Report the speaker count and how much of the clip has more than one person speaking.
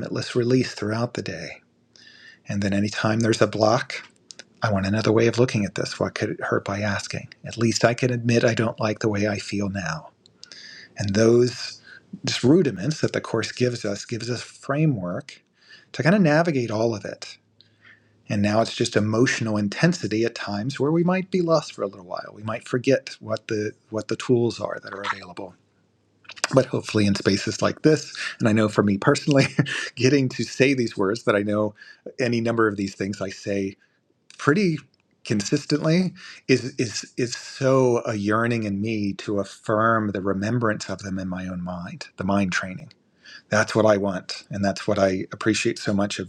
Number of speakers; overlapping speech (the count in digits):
1, no overlap